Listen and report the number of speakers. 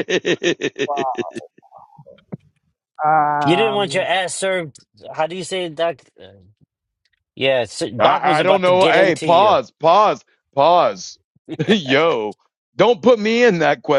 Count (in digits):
3